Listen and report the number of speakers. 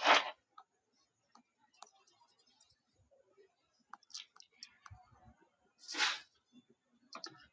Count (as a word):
zero